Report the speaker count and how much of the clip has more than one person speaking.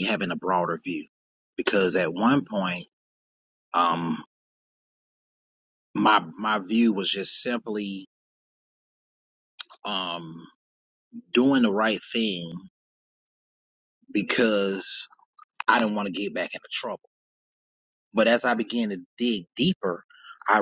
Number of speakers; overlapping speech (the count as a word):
one, no overlap